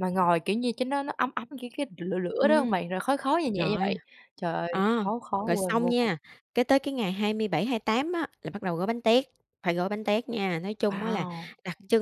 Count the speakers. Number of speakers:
two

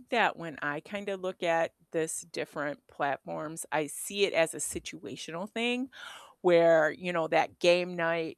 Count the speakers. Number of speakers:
one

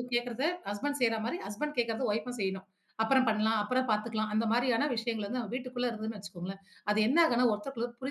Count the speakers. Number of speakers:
one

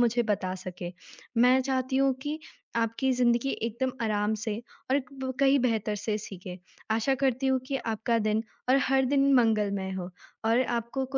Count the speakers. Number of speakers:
one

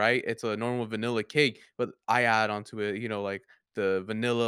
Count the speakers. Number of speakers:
one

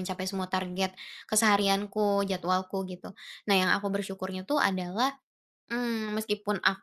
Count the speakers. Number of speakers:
one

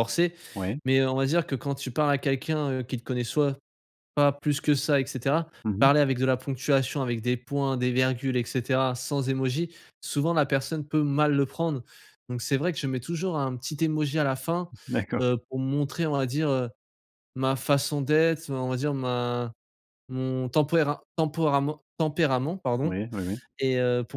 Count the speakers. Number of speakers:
two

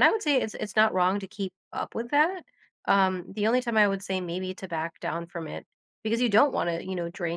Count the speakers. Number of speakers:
one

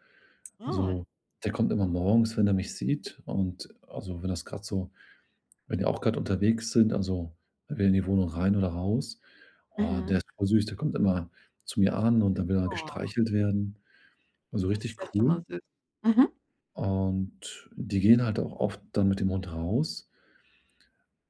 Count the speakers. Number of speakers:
two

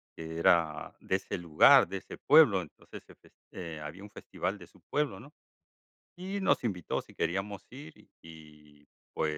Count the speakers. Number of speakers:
one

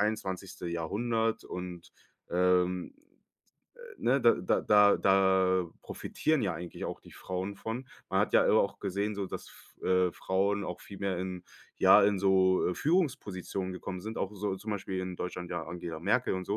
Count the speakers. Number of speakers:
one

